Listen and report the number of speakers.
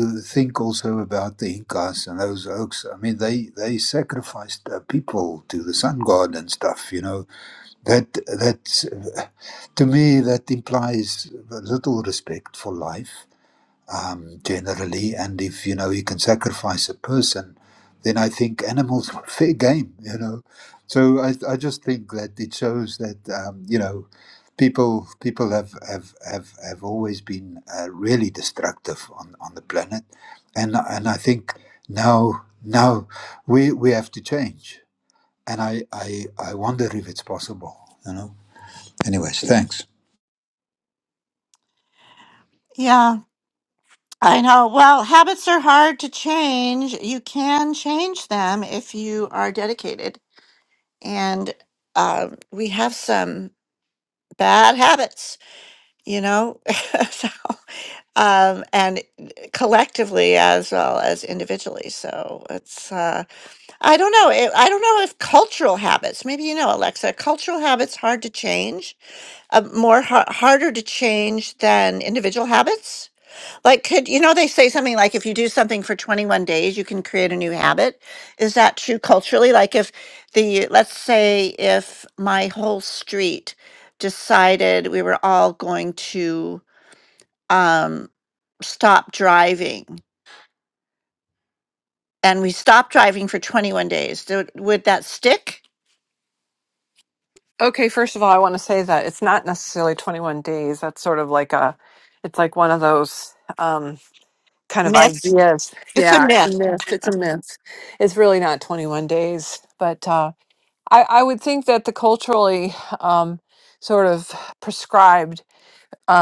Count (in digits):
3